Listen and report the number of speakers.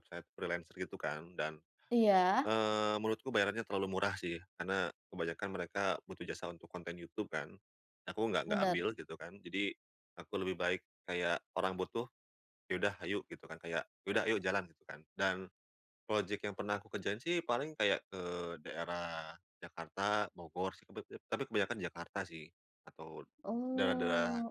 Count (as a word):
two